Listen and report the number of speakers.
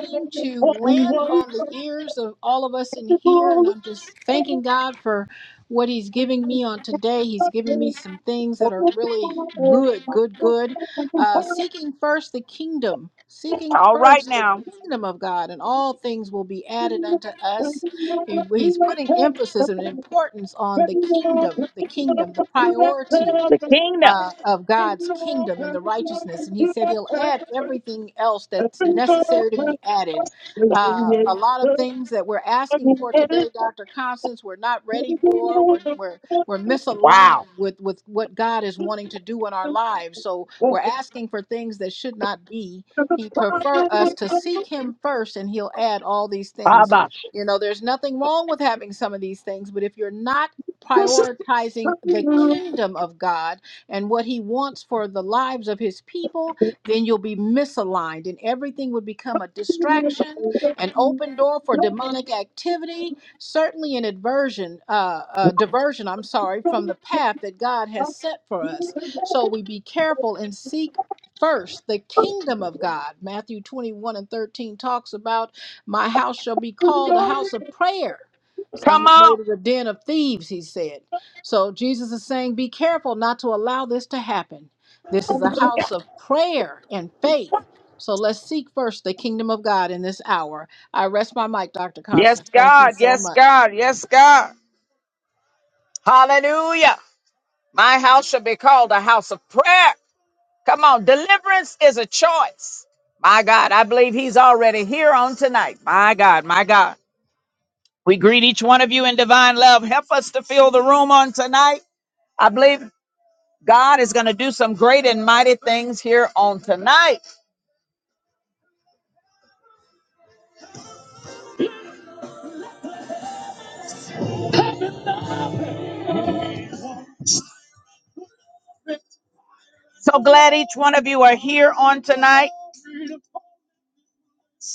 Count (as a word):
two